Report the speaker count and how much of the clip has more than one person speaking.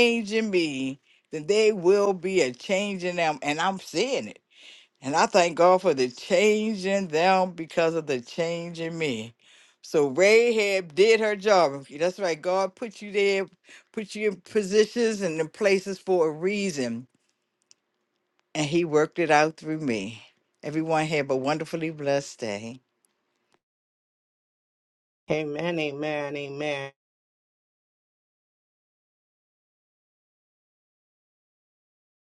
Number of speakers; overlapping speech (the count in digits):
2, no overlap